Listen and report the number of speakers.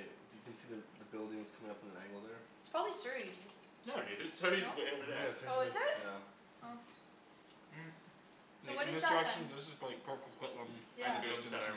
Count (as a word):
four